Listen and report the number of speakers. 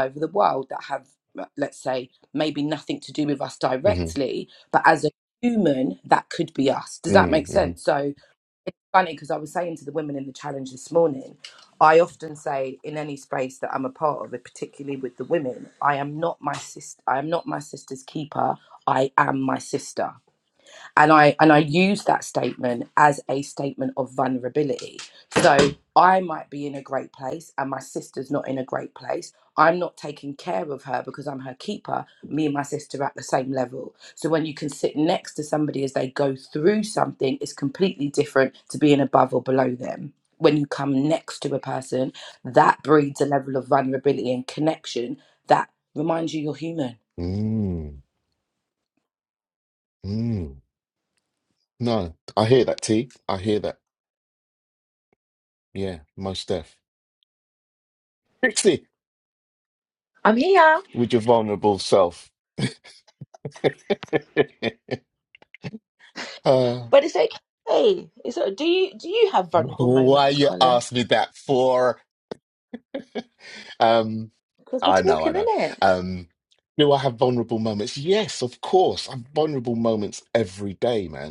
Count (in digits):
3